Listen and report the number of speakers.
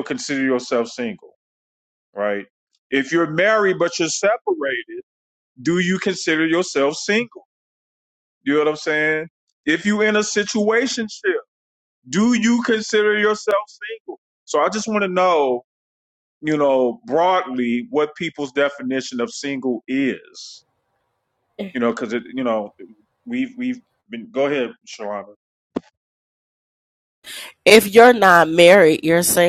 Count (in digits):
2